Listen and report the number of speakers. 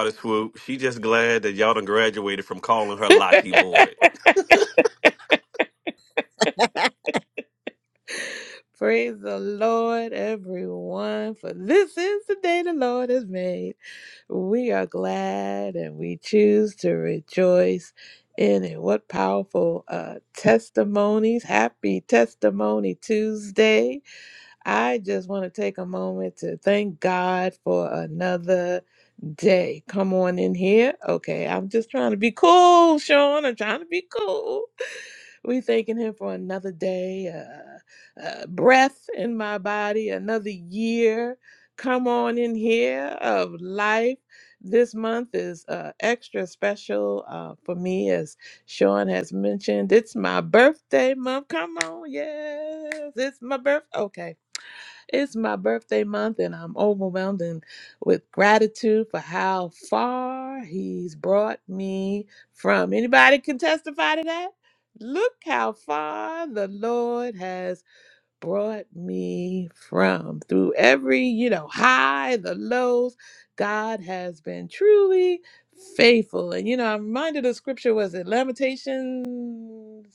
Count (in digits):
2